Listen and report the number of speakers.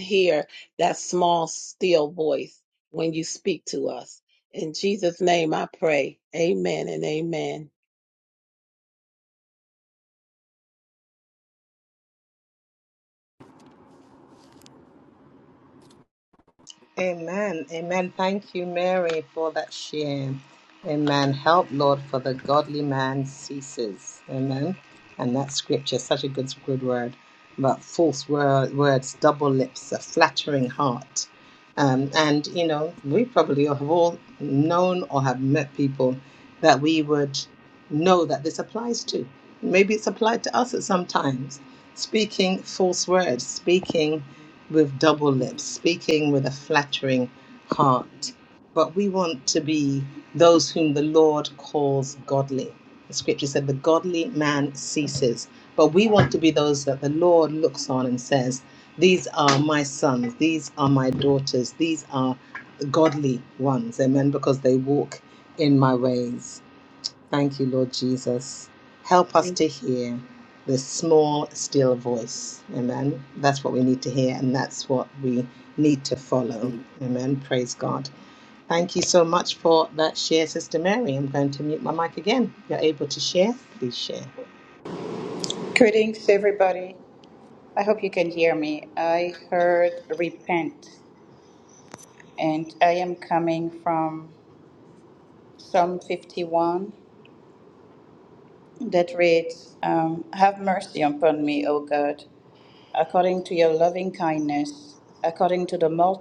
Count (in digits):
3